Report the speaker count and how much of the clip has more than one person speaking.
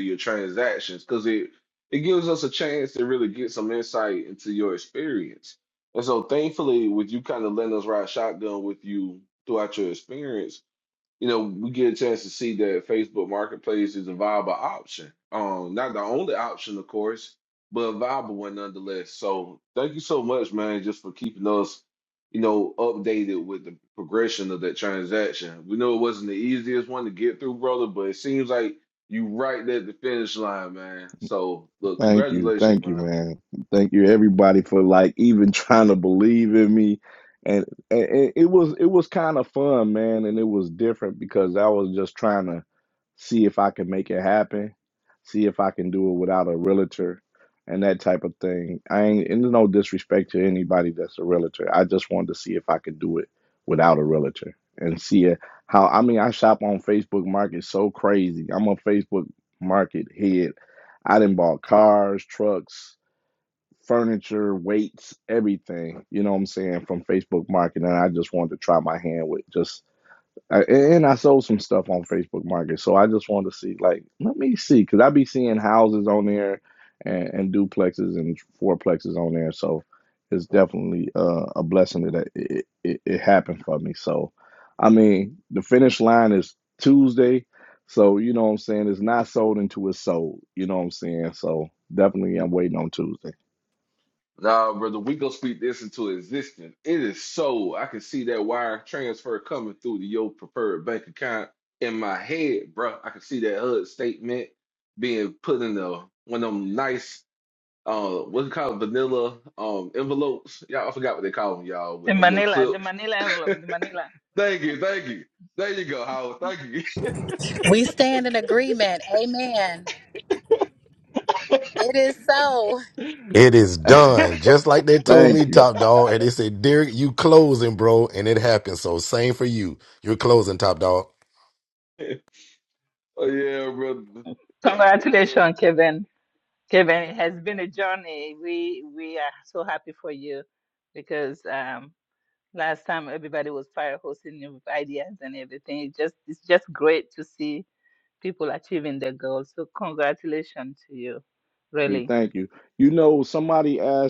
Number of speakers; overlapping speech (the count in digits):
5, about 2%